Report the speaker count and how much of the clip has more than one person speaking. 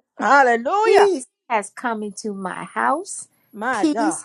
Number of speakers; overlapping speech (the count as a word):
two, about 16%